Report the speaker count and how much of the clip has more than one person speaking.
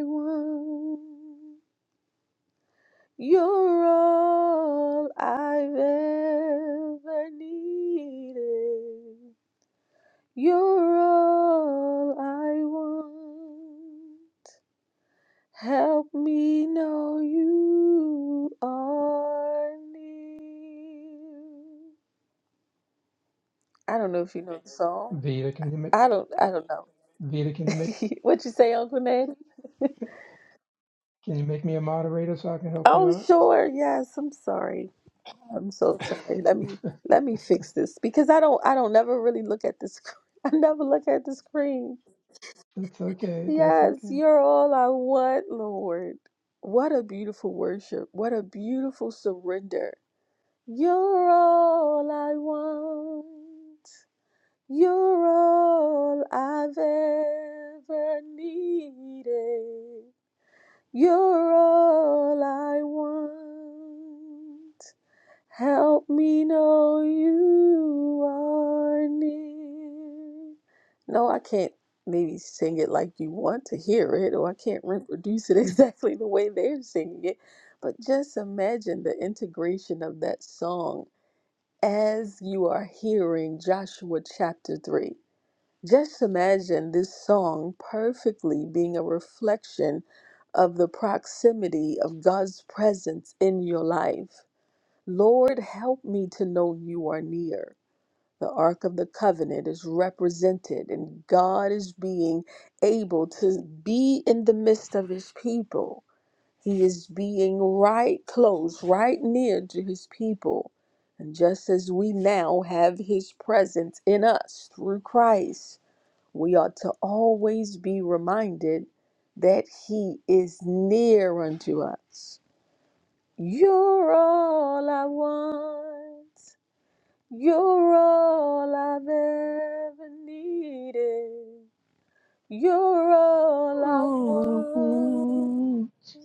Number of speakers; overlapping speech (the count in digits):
3, about 2%